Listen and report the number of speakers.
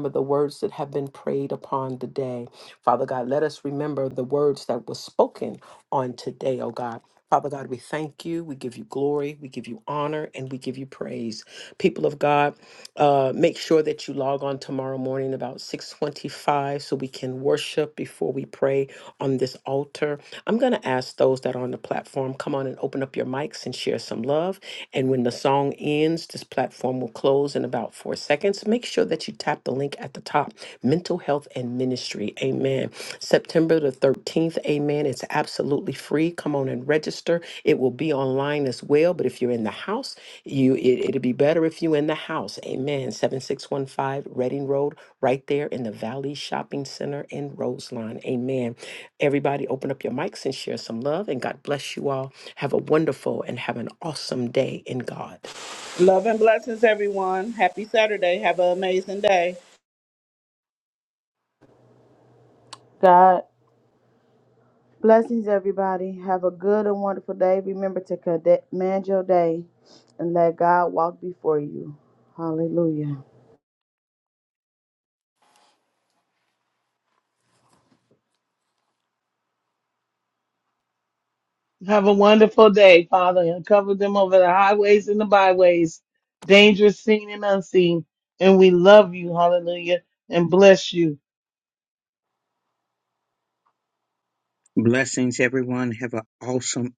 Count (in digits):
5